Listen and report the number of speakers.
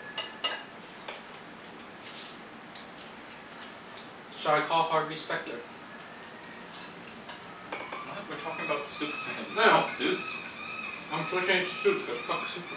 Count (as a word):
two